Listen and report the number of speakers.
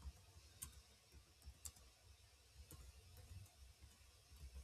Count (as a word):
zero